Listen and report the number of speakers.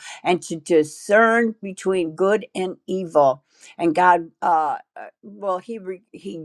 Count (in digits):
1